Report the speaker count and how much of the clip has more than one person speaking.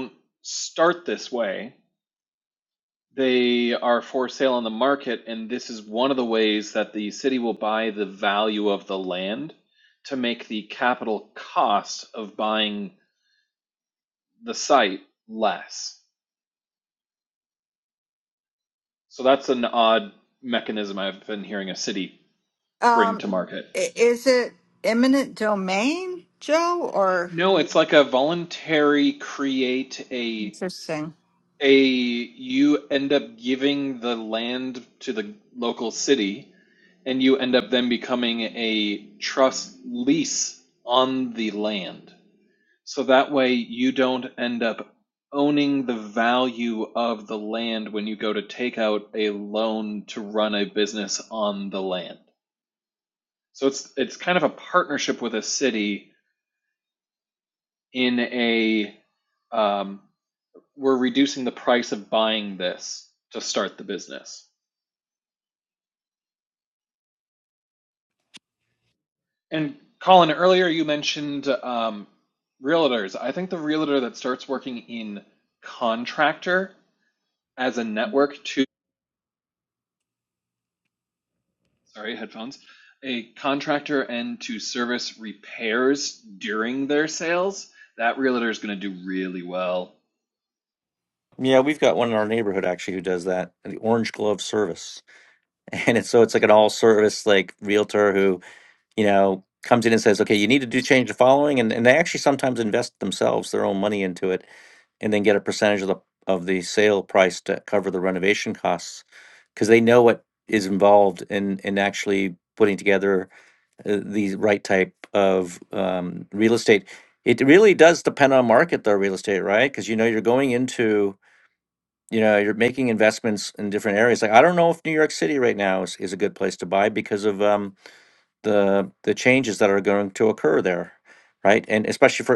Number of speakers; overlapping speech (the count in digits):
3, under 1%